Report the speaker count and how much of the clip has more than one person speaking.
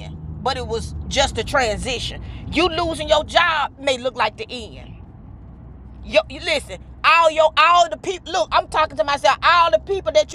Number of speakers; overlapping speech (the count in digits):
1, no overlap